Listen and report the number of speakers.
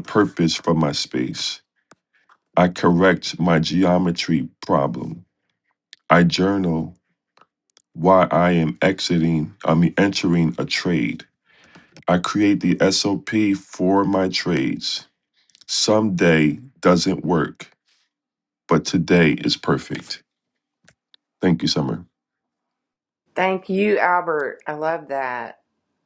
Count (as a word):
two